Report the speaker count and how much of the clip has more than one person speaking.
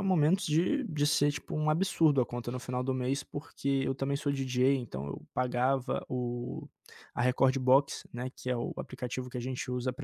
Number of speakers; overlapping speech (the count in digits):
1, no overlap